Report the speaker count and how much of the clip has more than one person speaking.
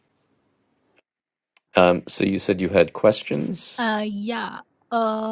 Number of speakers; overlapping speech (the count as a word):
two, no overlap